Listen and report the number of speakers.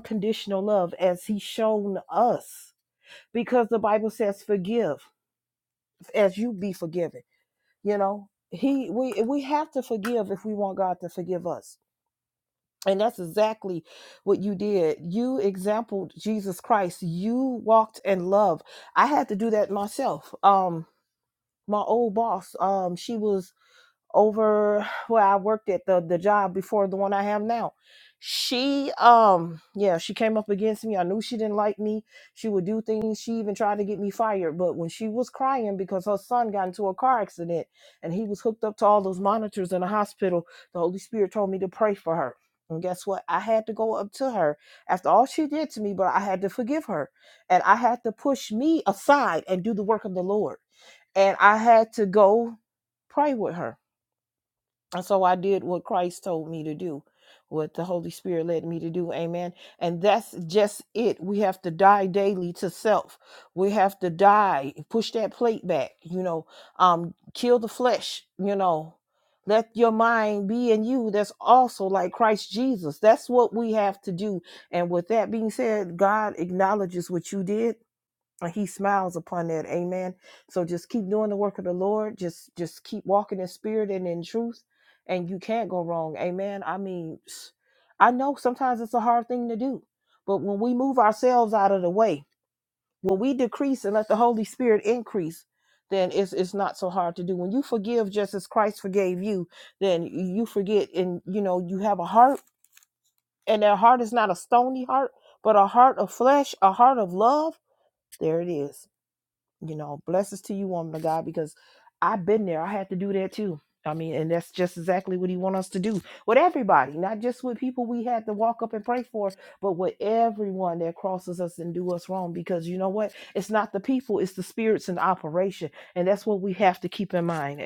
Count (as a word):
one